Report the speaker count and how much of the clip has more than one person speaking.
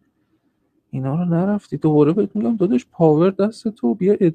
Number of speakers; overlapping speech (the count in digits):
1, no overlap